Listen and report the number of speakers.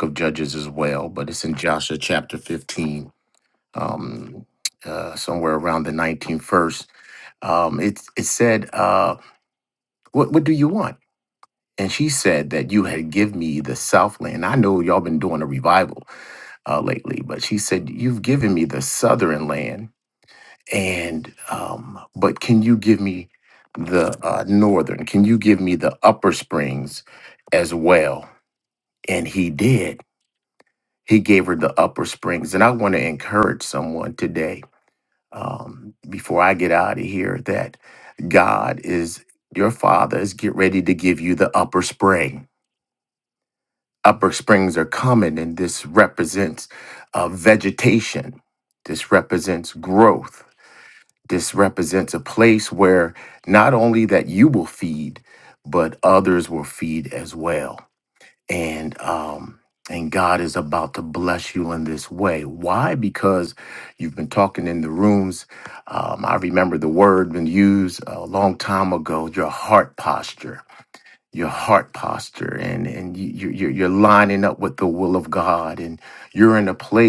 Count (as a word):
one